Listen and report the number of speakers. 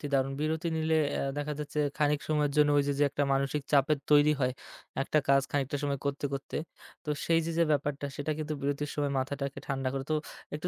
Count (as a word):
one